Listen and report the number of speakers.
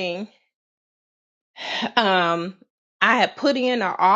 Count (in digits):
1